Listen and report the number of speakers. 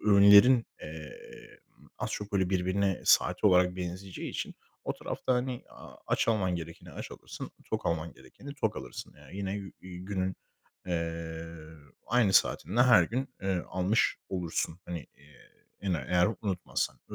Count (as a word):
one